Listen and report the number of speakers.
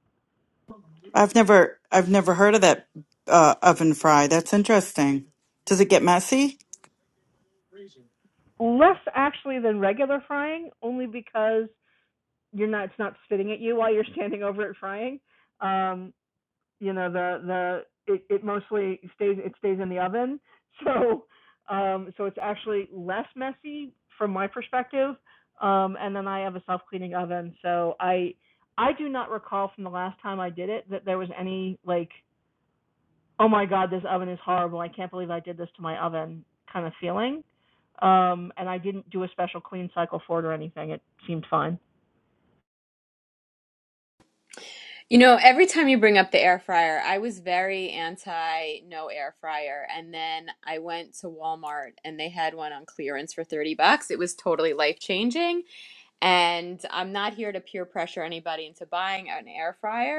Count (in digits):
3